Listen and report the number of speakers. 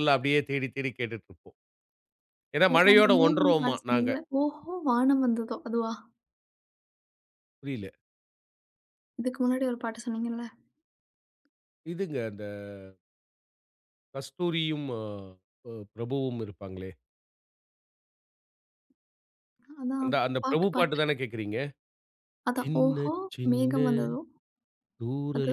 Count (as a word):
two